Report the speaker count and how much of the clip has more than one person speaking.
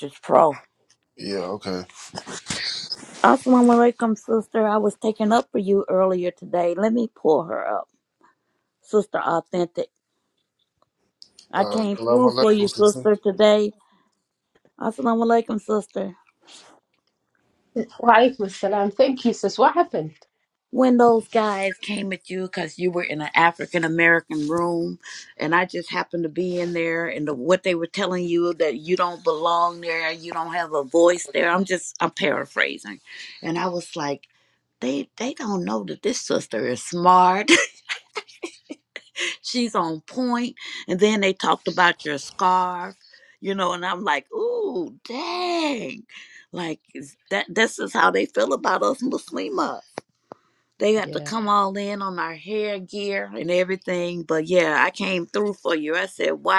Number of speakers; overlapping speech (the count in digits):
3, about 3%